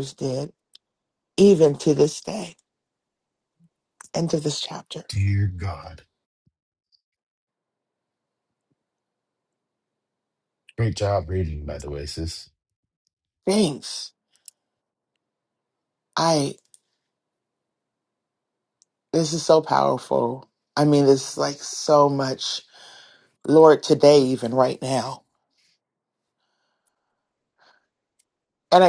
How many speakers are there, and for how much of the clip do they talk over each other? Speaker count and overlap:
two, no overlap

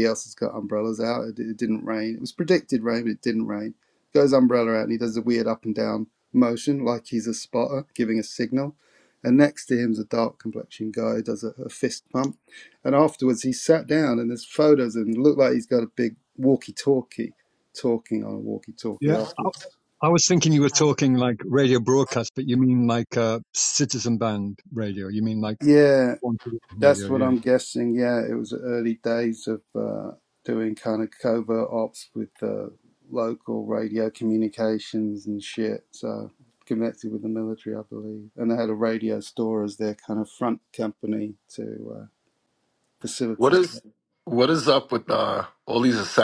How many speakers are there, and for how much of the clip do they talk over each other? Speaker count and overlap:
three, about 3%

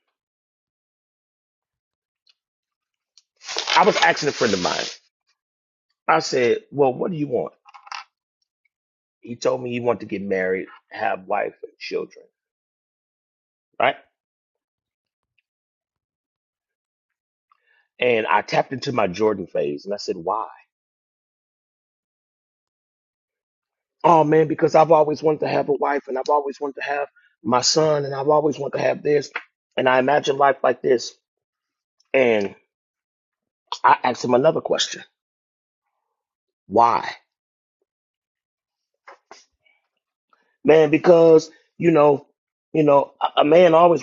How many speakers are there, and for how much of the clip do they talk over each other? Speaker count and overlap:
one, no overlap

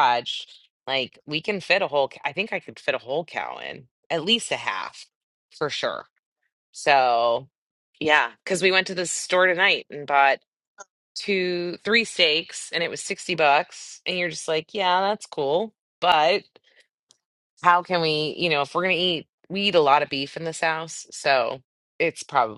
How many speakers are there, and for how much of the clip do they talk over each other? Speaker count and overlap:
one, no overlap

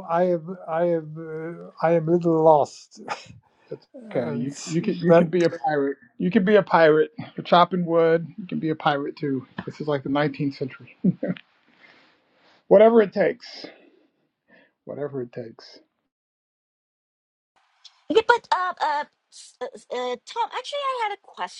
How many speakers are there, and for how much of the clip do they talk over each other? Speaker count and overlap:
three, about 2%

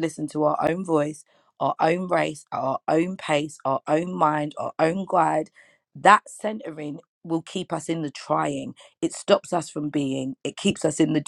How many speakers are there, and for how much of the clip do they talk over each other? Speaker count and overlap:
one, no overlap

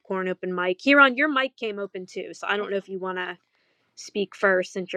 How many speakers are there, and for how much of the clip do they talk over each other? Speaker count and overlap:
one, no overlap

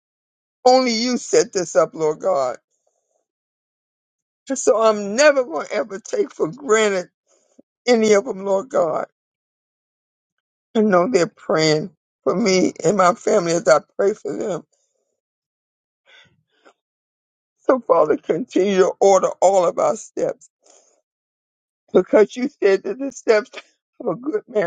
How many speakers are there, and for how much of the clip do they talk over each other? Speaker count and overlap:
one, no overlap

